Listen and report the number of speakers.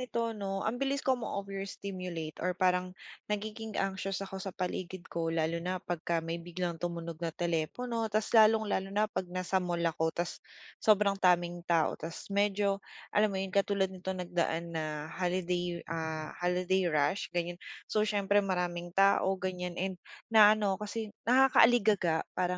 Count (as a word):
one